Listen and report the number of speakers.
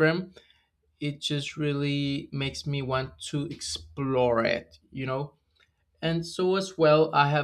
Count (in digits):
1